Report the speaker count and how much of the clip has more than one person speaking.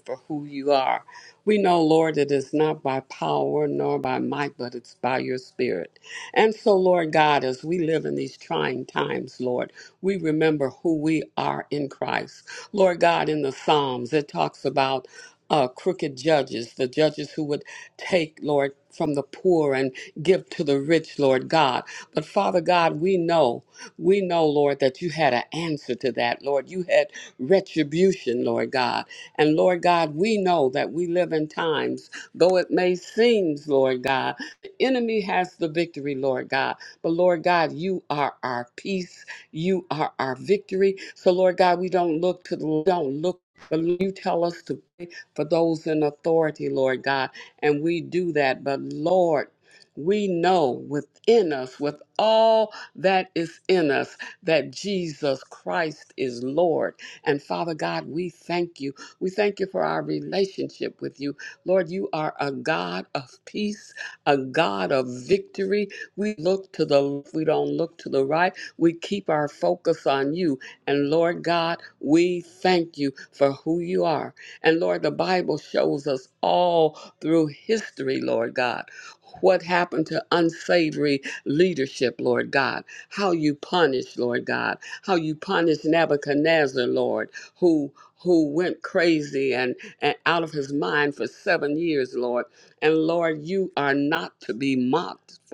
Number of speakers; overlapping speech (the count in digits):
1, no overlap